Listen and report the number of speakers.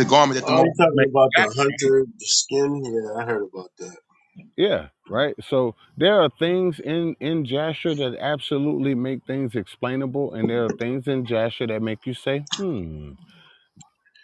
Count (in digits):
3